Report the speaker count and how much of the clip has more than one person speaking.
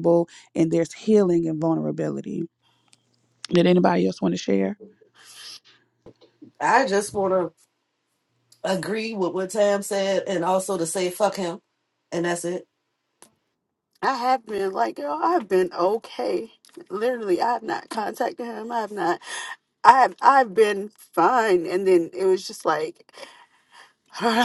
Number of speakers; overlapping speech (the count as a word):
three, no overlap